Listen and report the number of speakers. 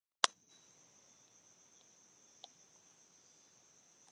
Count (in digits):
0